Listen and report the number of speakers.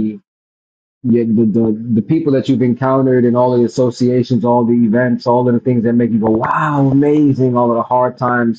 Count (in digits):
1